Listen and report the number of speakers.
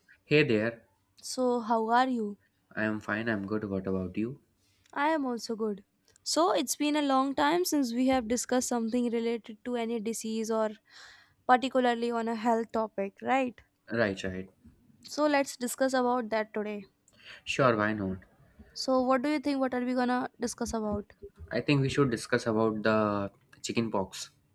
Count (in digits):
2